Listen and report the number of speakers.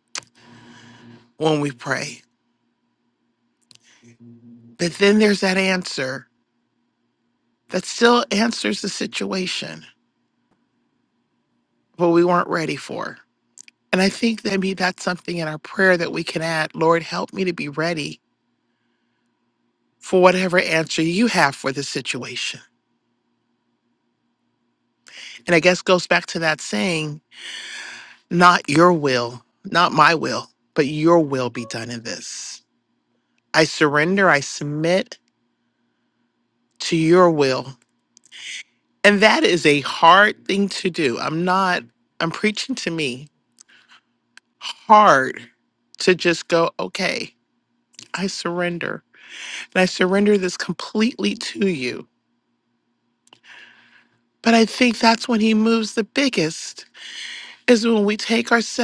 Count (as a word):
one